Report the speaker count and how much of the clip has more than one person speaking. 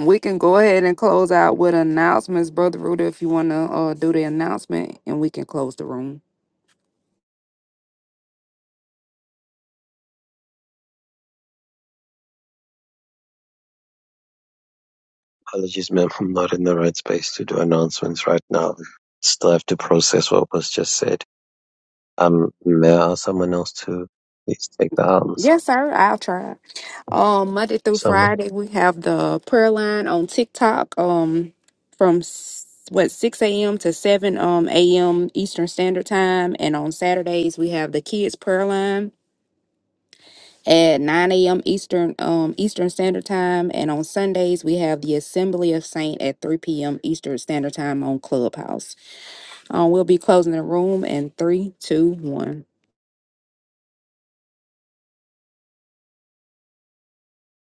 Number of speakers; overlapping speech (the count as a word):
two, about 1%